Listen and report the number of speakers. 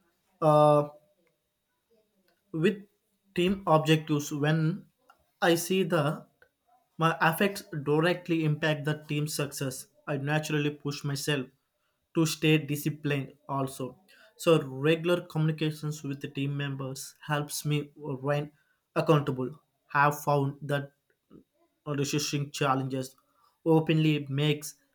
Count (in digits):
1